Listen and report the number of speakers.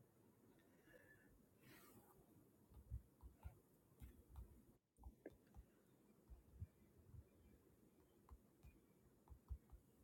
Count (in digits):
0